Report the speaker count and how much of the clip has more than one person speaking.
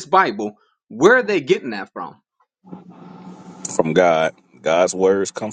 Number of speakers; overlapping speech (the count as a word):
two, no overlap